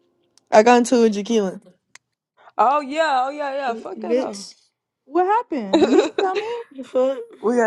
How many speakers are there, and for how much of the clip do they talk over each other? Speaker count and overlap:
3, about 4%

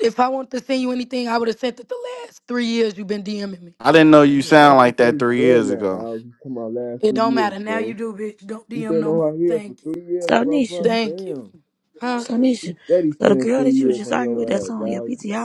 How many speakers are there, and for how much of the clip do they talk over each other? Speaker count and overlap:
4, about 46%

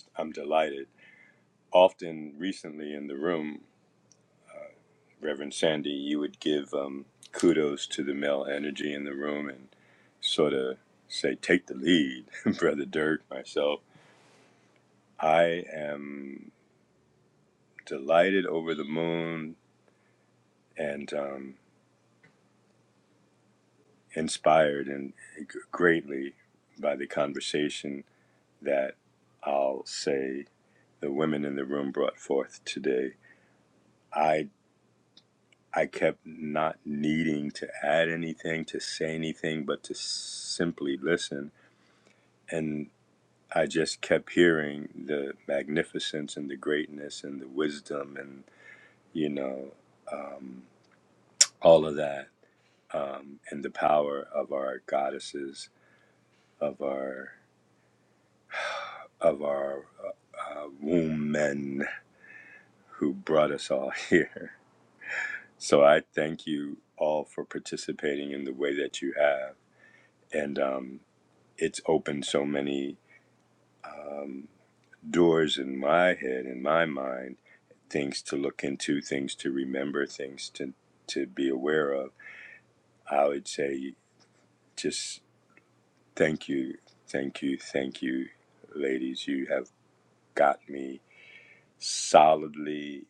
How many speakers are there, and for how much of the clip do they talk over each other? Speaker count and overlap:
1, no overlap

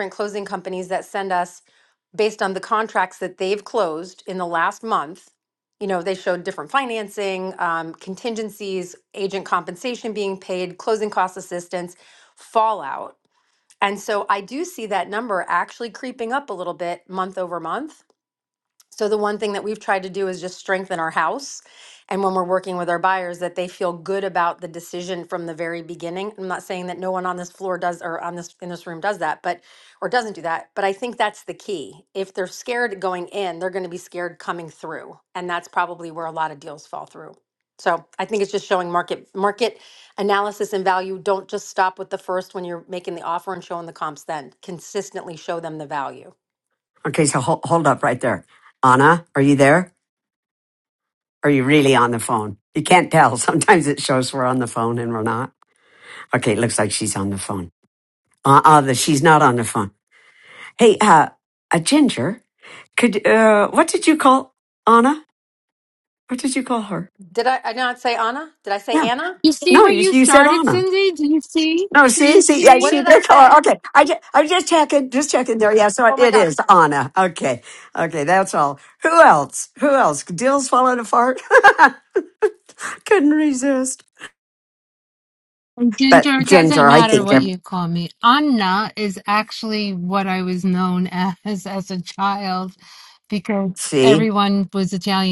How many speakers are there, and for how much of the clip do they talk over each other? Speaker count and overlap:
3, about 5%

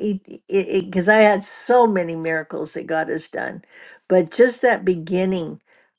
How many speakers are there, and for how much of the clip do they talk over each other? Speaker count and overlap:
1, no overlap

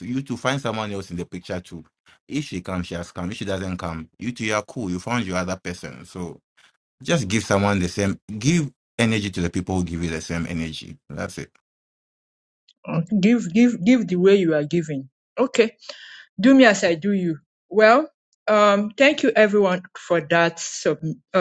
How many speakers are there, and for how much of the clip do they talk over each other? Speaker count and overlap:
2, no overlap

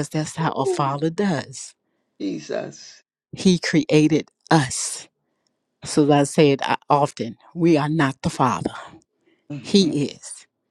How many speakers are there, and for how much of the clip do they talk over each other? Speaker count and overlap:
2, about 8%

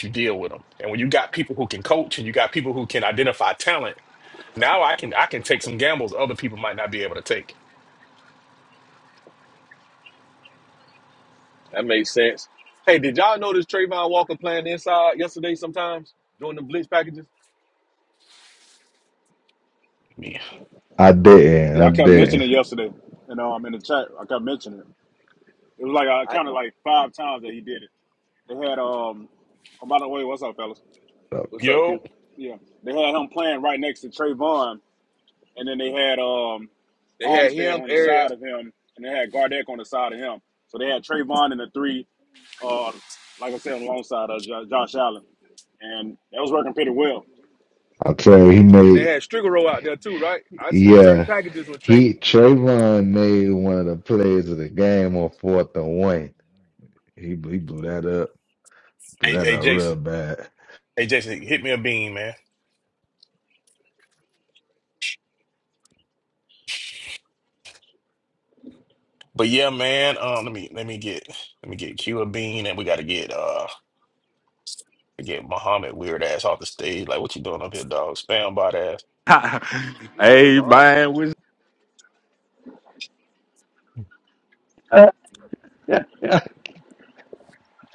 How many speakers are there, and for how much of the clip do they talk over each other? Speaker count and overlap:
5, about 6%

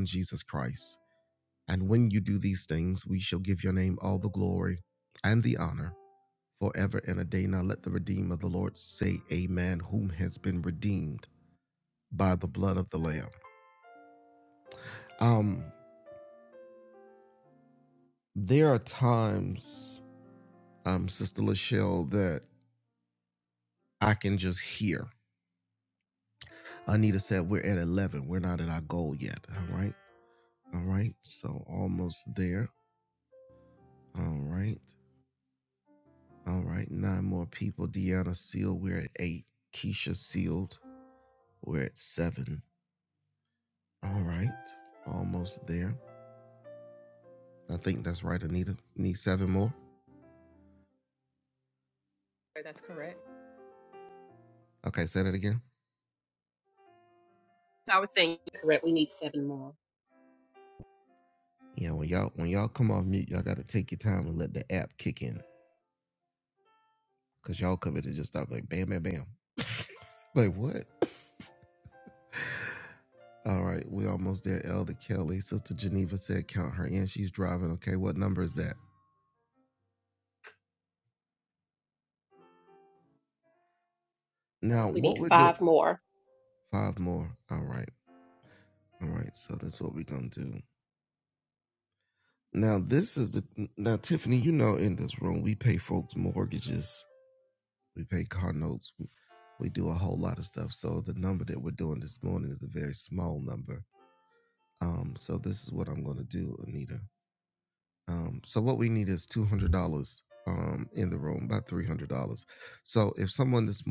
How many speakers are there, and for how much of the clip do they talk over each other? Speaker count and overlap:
2, about 1%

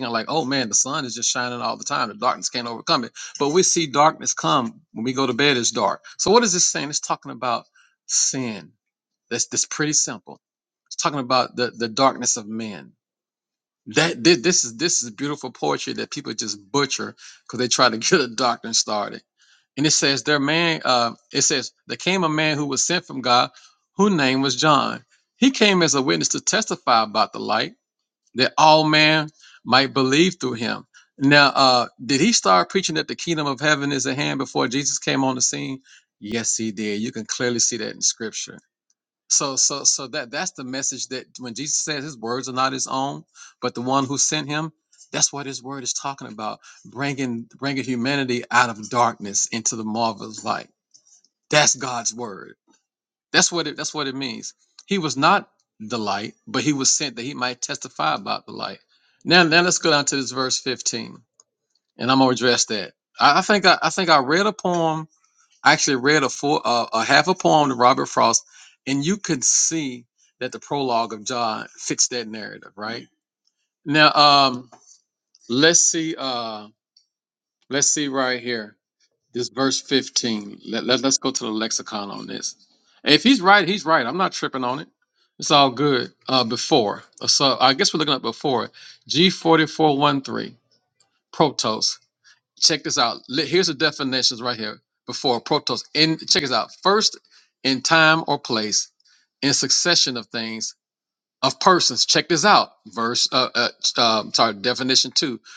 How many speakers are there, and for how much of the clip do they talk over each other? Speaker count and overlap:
1, no overlap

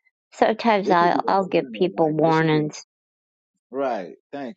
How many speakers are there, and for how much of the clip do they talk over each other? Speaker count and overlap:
2, about 41%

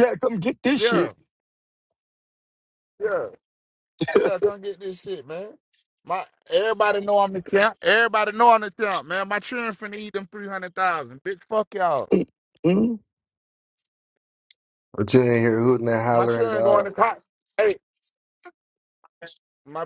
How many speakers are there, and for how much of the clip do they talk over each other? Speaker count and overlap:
3, about 5%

